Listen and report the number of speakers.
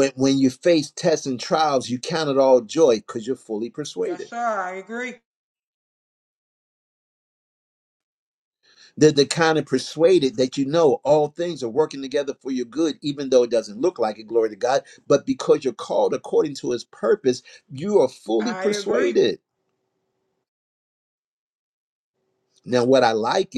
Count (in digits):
2